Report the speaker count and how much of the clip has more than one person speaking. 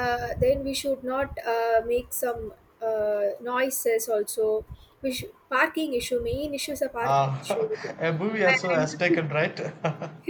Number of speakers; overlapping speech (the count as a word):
two, about 9%